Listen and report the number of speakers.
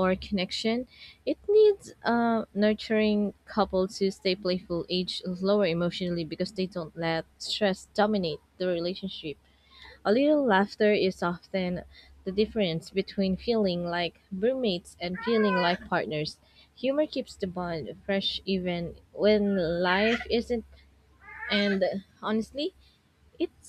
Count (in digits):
1